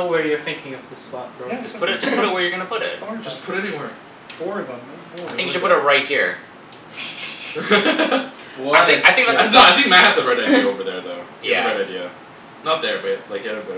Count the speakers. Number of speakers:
4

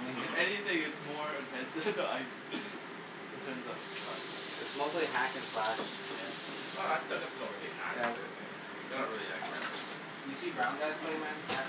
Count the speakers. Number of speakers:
3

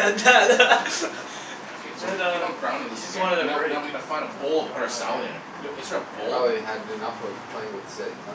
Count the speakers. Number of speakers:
3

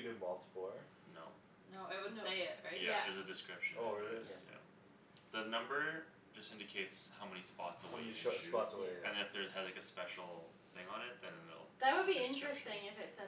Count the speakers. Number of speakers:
4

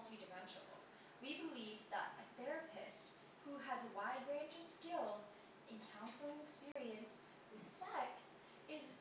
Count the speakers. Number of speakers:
1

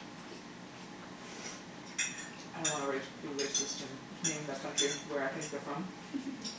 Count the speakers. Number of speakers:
1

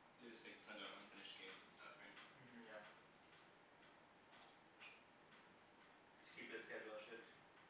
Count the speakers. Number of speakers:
2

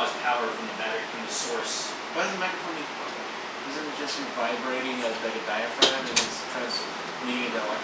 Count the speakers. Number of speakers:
2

